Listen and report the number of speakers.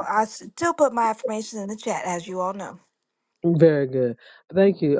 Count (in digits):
2